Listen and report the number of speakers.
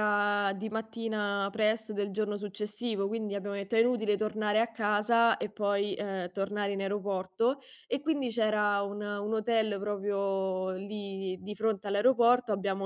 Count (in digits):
1